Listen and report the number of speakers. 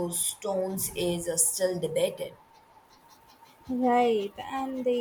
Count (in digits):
2